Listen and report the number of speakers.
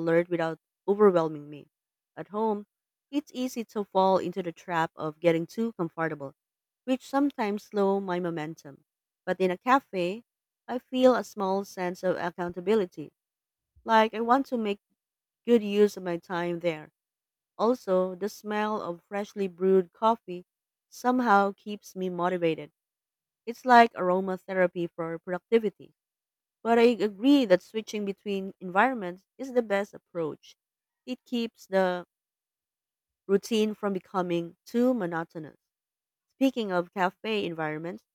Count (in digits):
1